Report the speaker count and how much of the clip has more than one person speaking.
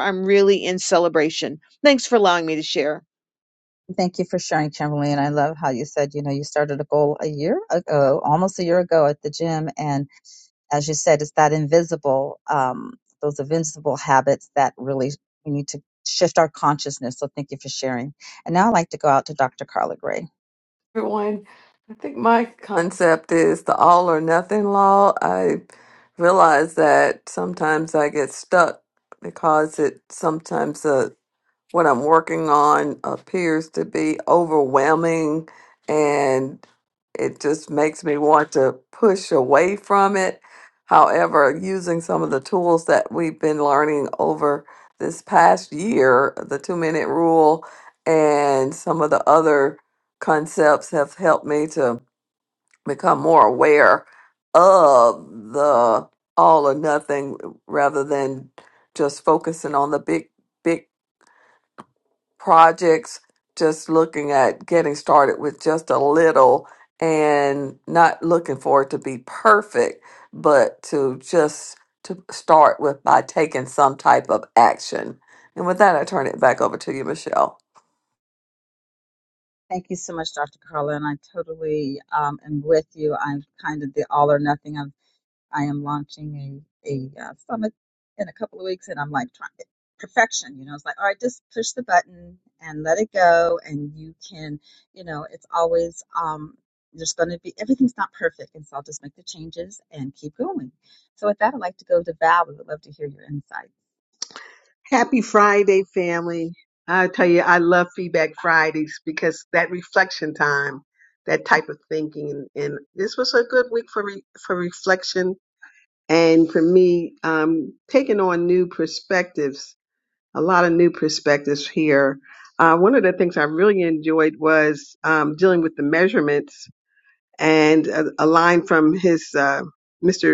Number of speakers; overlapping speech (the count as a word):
four, no overlap